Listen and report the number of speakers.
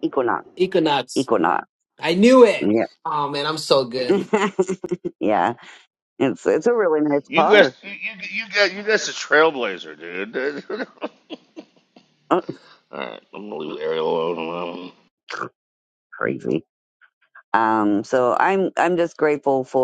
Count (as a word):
three